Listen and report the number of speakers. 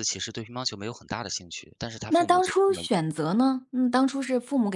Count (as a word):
two